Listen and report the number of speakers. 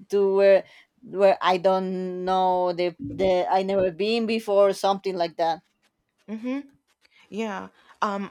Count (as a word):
two